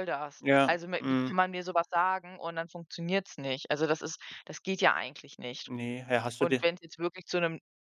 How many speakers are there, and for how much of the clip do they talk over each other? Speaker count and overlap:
2, about 11%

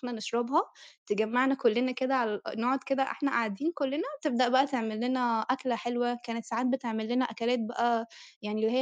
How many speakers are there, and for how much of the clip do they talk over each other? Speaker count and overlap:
1, no overlap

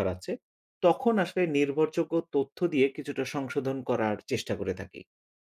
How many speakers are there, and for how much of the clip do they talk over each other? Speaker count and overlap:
1, no overlap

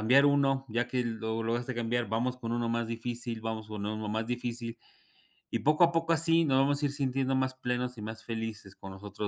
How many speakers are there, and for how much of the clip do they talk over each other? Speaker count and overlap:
1, no overlap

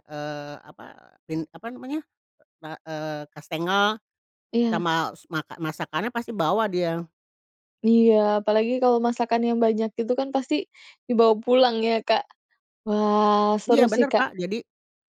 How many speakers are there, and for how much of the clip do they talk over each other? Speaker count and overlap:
2, about 4%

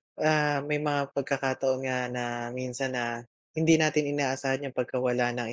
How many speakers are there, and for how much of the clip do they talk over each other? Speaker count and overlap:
1, no overlap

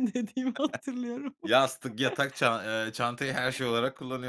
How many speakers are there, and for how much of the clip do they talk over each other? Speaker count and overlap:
2, no overlap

